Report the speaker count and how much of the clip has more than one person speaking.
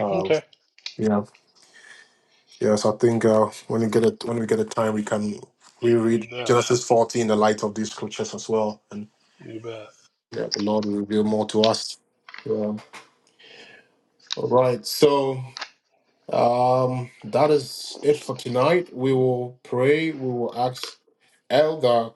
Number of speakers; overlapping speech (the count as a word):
two, about 3%